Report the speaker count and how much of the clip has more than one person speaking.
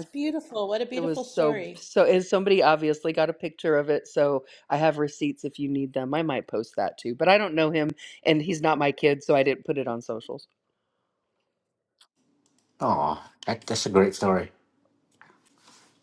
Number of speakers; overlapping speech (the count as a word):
three, about 4%